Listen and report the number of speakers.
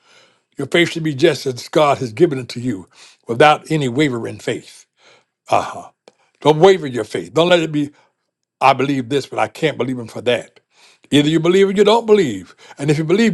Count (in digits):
1